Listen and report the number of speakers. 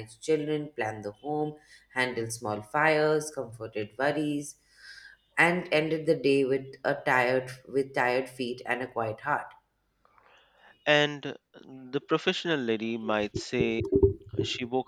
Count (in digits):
2